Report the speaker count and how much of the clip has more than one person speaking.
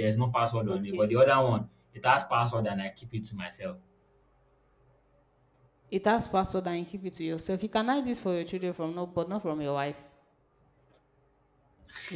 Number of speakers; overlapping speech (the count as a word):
two, about 3%